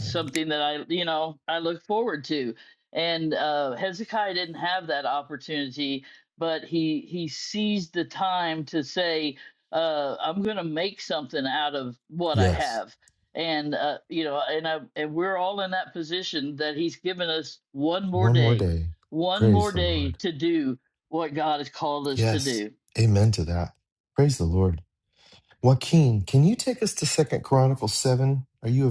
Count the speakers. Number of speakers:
2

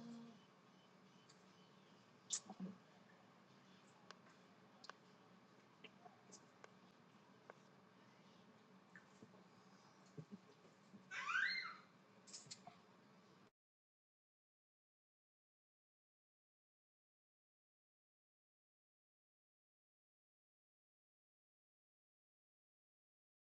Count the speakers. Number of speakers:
0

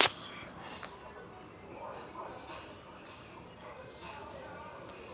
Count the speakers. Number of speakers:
0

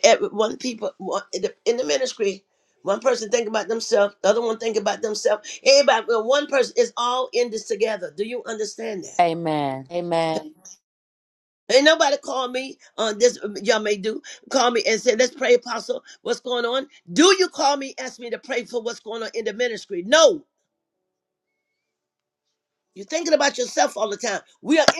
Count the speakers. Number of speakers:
2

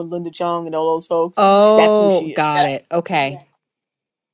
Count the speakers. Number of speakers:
2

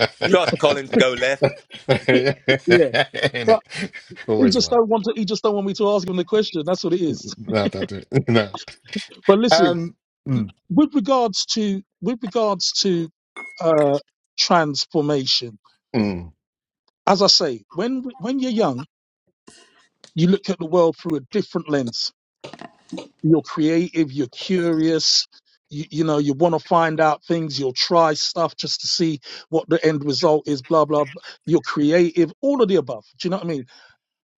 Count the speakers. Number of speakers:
3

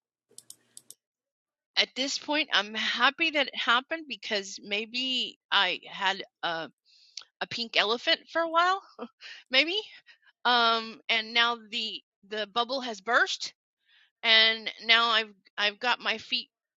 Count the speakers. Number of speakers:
1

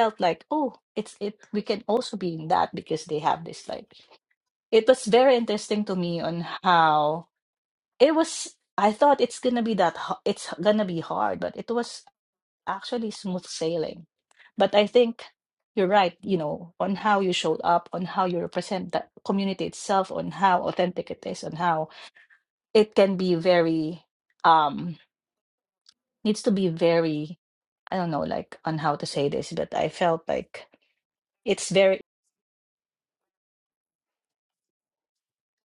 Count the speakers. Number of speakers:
1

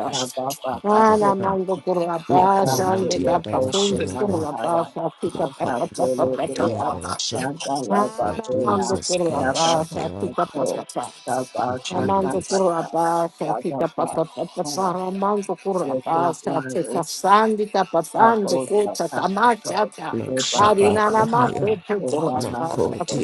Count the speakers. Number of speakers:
3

